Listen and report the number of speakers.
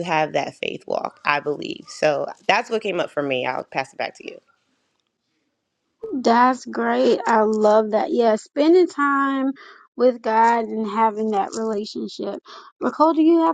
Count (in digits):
2